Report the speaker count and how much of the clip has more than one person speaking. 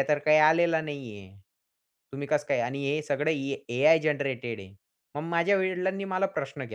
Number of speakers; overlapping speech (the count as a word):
one, no overlap